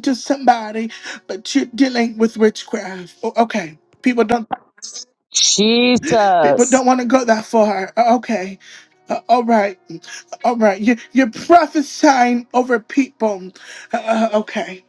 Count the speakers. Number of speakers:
2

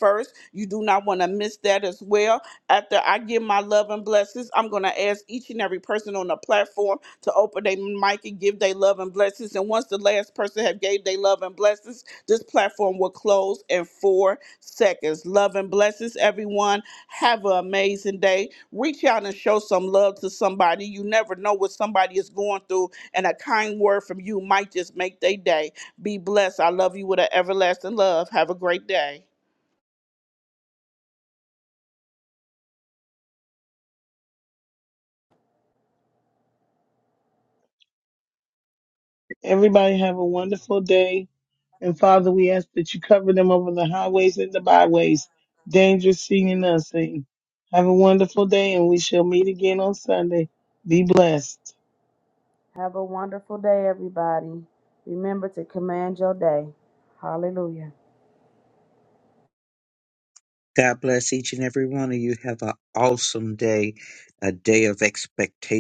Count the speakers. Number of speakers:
4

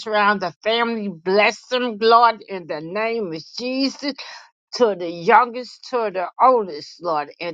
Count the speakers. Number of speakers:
1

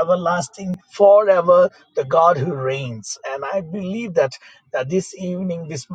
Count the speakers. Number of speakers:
1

